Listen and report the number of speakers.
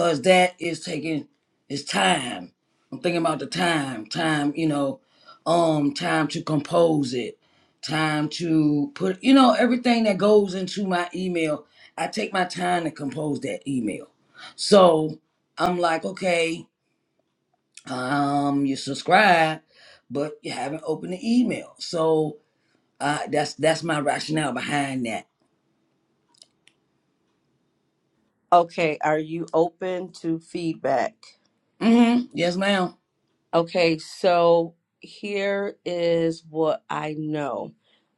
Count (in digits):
2